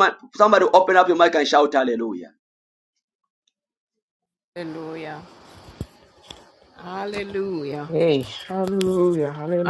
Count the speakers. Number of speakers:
3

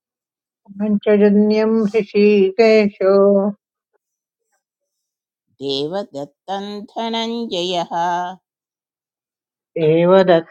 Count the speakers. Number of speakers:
2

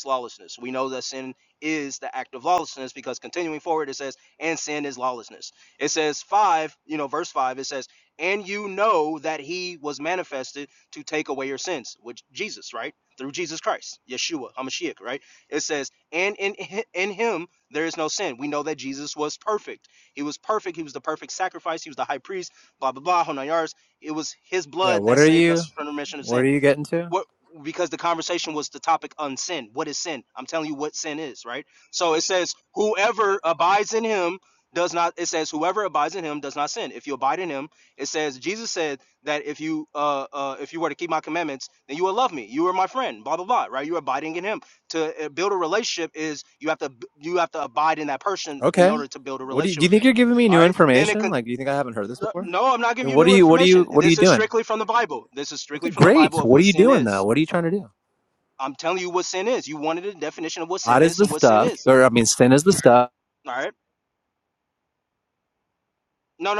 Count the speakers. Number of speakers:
2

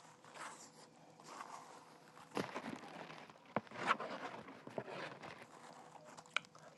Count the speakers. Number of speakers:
0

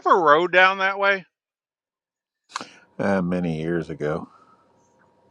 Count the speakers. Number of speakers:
2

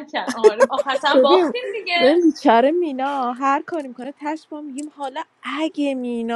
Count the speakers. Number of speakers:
2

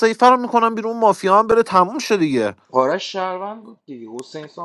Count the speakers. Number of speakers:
2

